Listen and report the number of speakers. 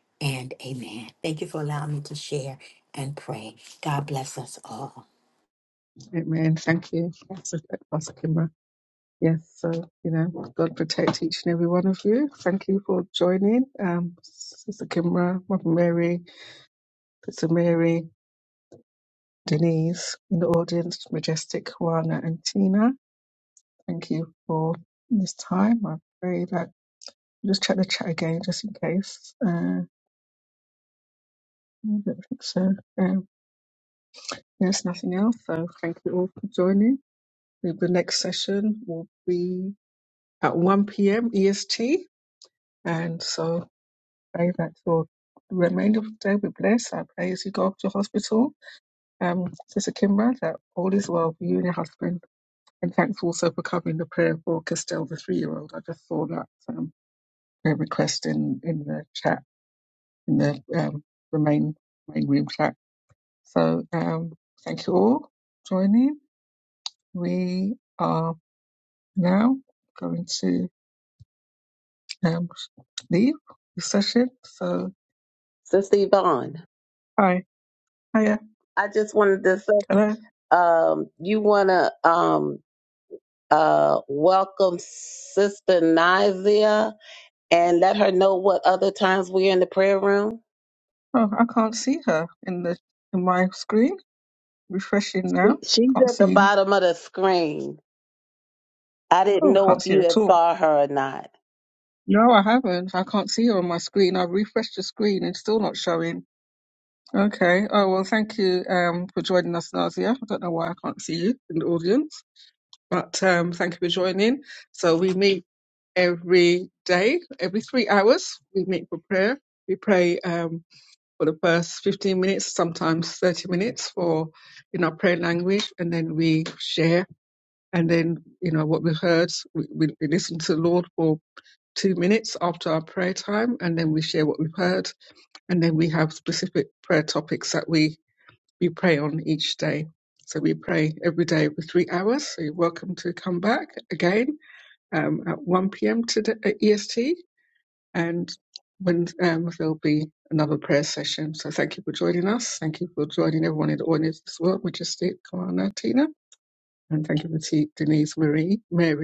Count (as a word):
three